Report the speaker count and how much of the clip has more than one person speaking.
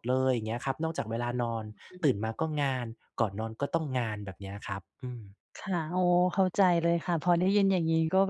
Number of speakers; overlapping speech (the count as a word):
two, under 1%